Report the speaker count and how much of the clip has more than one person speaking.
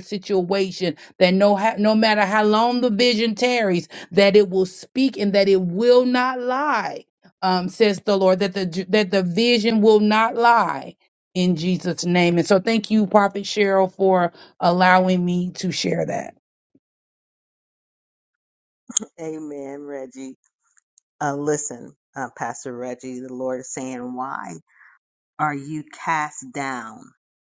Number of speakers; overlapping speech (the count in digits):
2, no overlap